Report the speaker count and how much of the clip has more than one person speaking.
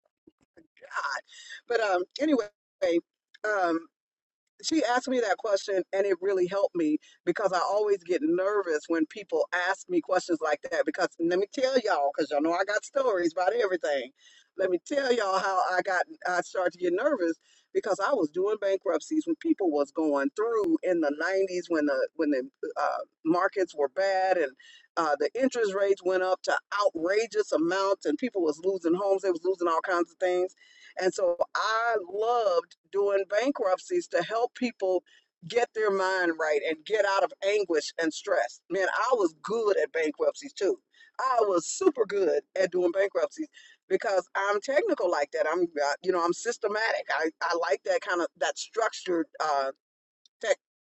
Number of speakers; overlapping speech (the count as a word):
one, no overlap